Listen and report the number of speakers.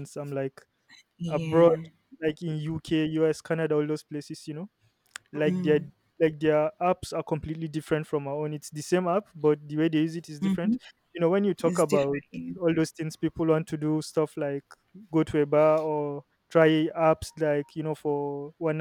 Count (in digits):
2